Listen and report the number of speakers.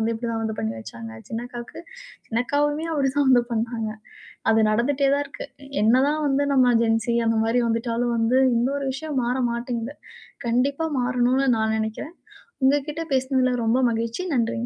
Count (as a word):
one